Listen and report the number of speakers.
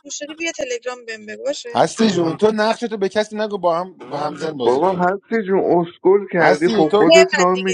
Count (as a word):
three